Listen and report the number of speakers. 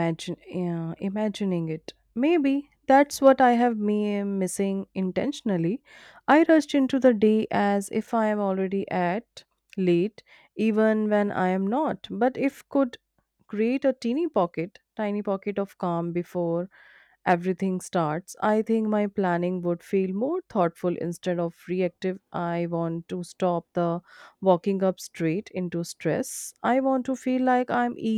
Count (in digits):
1